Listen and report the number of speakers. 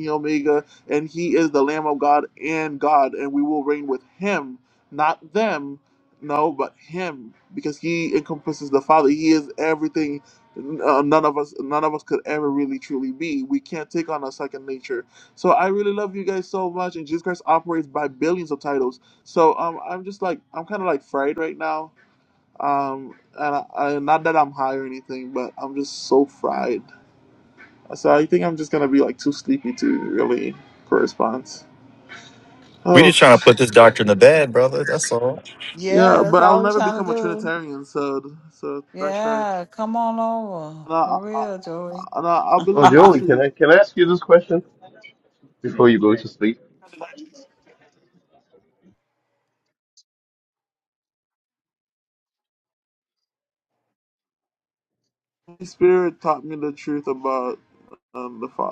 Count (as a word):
four